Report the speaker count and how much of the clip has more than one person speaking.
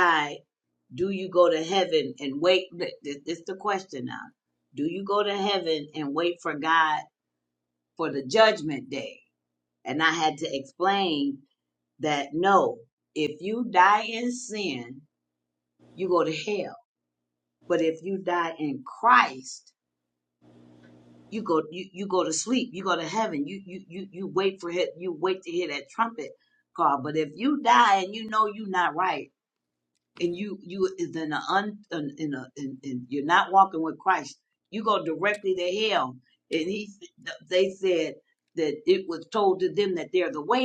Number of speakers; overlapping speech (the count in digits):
1, no overlap